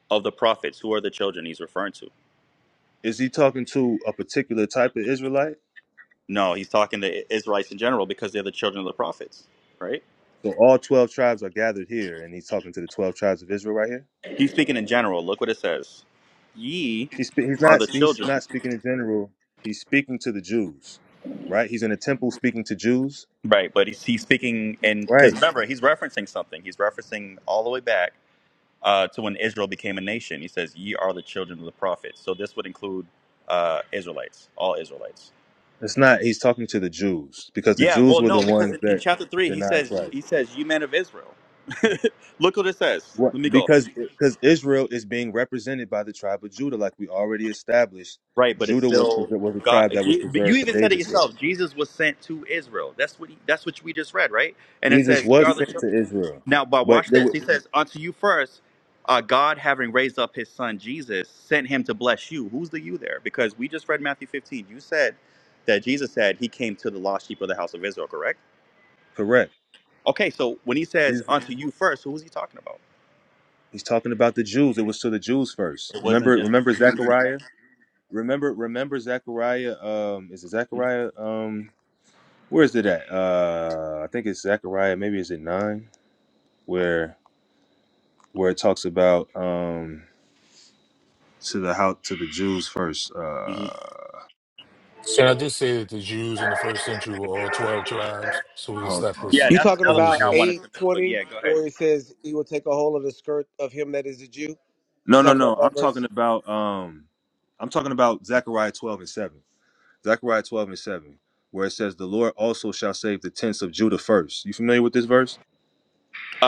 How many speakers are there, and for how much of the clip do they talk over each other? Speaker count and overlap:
four, about 11%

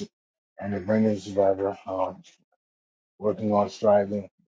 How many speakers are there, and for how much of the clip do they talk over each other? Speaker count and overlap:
one, no overlap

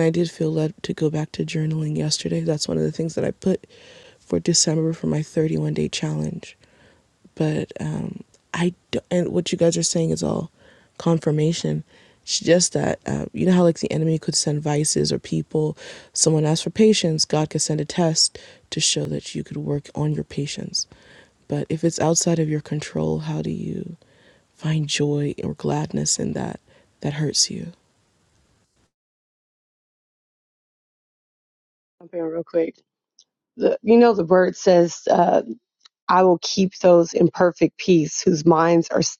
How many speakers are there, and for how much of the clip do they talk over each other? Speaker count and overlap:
two, no overlap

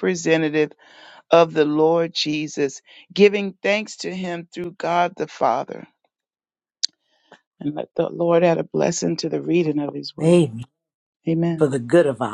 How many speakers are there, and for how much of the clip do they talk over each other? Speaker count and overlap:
two, about 2%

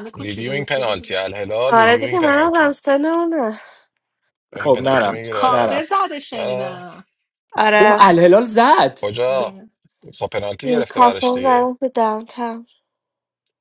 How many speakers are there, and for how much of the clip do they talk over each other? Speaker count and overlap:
four, about 34%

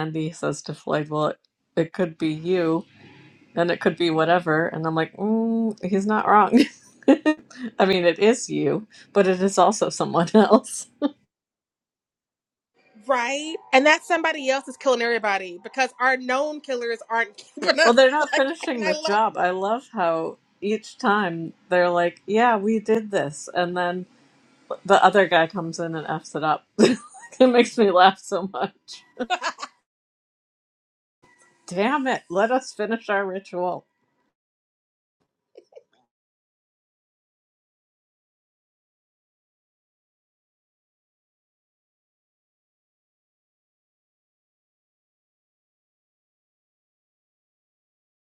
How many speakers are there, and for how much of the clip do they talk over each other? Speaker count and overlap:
two, about 1%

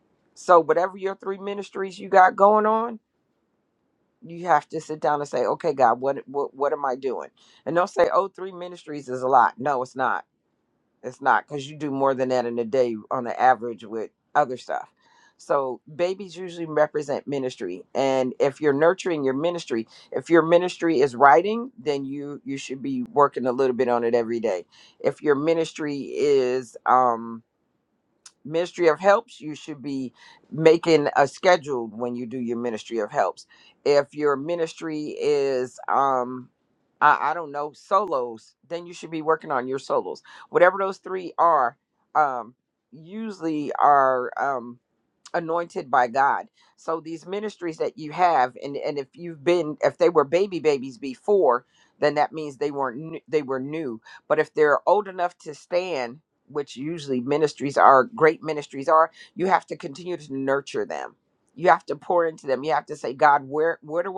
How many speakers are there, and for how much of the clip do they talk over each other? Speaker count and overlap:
one, no overlap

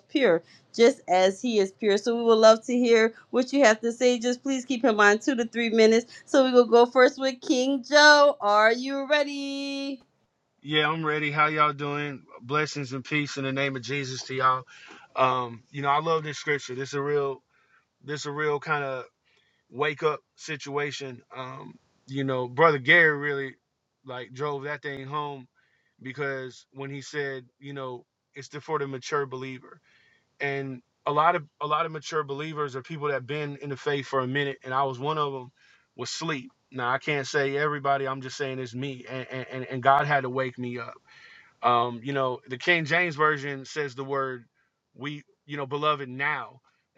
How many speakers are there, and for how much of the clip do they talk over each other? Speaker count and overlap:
two, no overlap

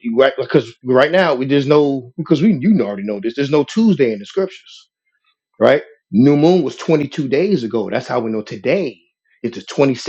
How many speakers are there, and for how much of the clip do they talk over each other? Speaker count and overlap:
one, no overlap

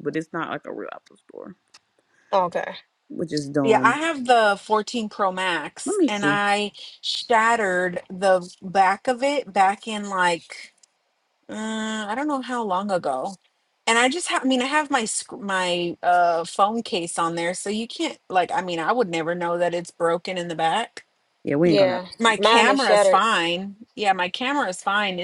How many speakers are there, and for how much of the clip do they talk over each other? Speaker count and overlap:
three, about 10%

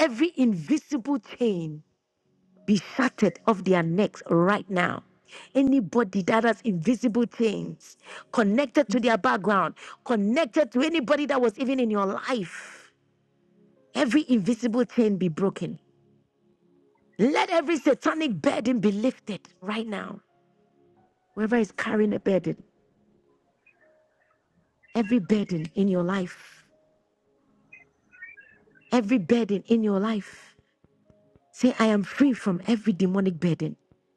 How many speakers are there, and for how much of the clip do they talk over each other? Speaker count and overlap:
one, no overlap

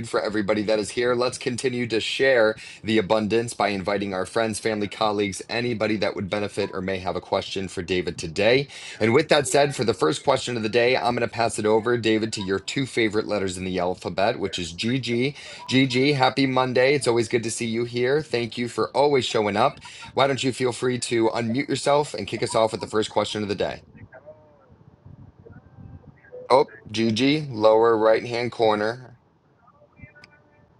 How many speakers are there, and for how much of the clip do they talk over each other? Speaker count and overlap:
one, no overlap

